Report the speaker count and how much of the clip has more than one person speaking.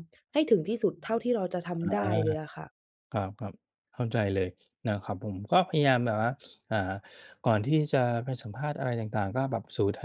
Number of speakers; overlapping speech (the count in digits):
2, about 1%